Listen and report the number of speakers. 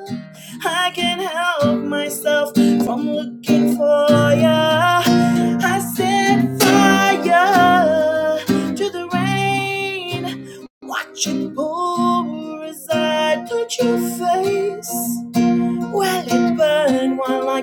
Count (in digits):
1